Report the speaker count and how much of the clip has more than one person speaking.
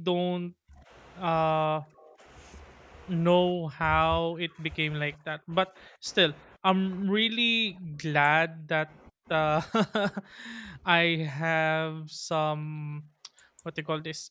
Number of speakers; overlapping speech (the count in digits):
1, no overlap